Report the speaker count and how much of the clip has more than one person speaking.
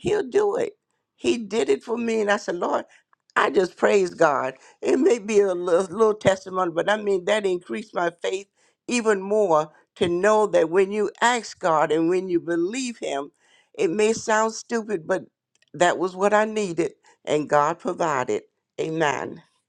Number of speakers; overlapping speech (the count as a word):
one, no overlap